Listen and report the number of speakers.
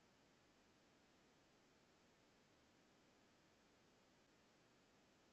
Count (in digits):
0